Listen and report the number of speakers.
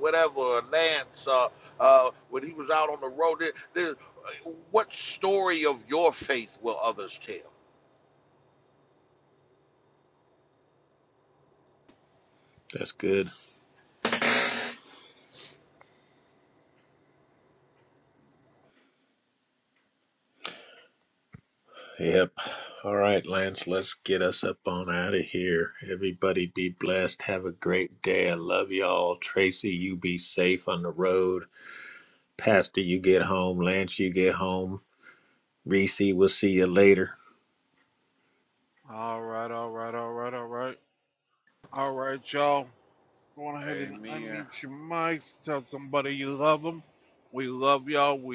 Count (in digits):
3